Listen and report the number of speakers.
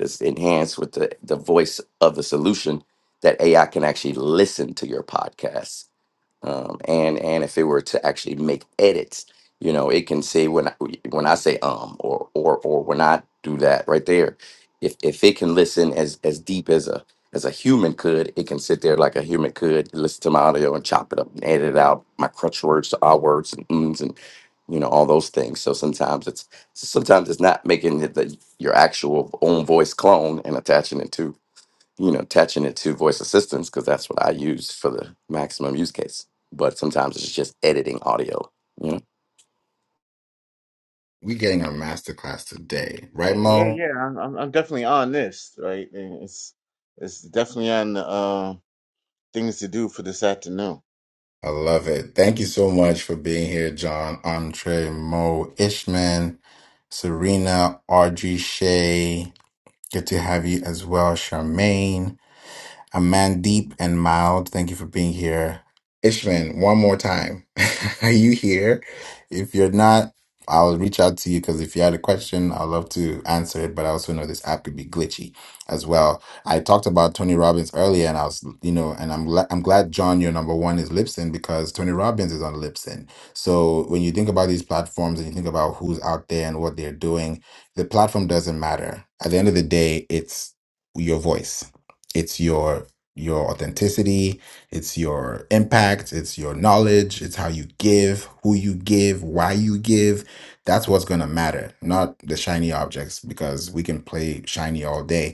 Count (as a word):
three